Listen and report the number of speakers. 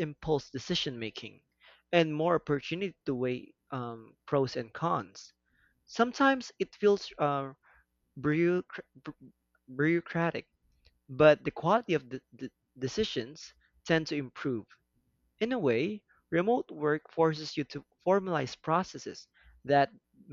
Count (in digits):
1